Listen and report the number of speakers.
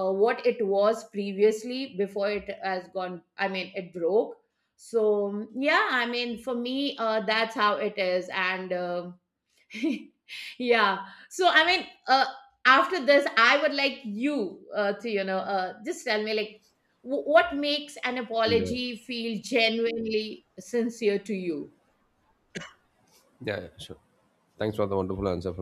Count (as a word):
two